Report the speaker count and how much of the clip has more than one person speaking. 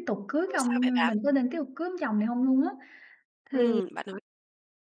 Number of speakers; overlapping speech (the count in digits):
2, about 20%